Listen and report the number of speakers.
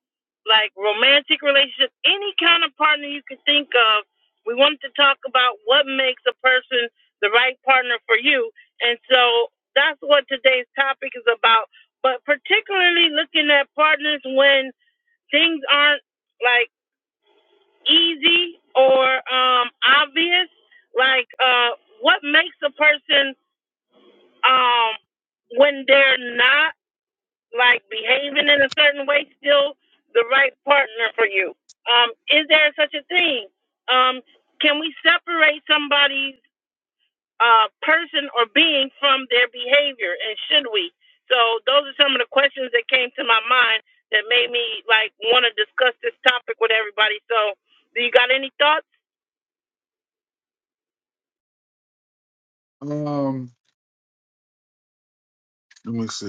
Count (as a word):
two